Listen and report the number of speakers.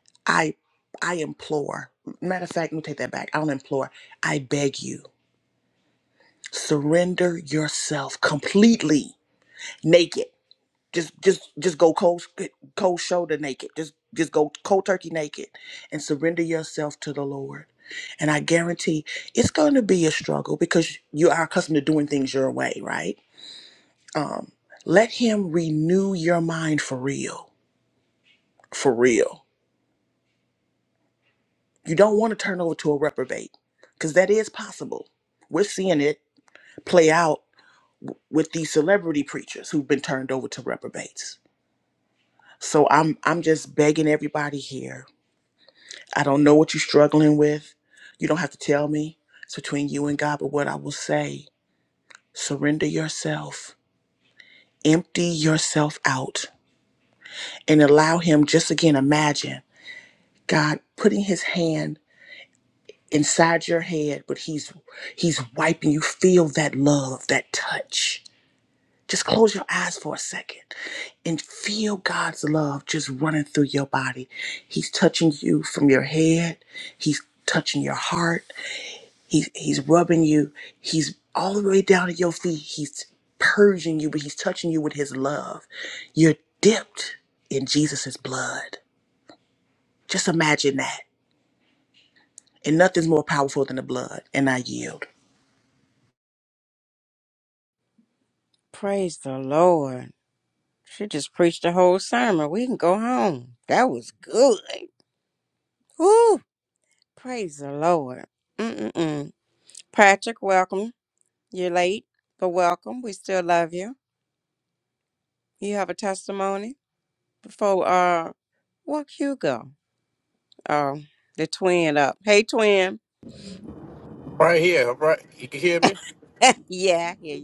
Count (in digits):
3